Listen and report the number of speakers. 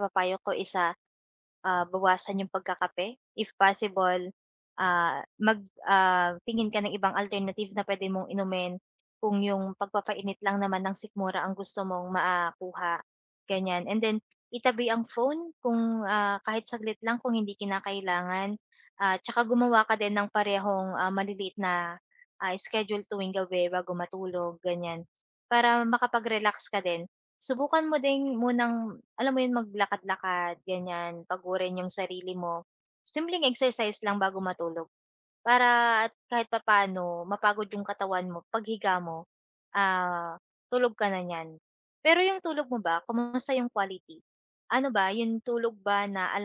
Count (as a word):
one